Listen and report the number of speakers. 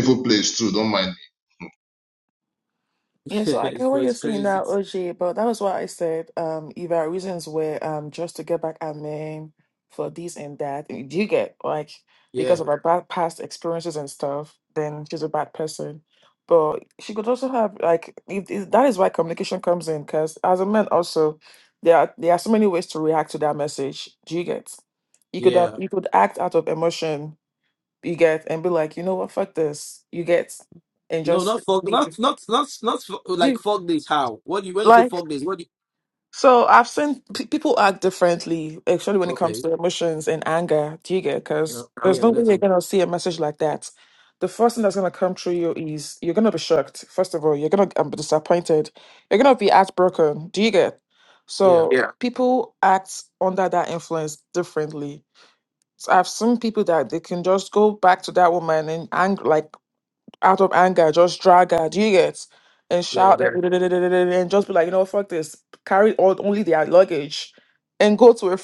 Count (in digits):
3